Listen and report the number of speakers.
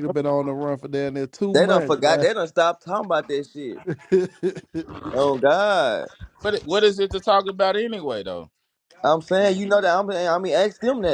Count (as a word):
three